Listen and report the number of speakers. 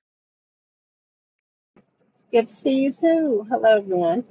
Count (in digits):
1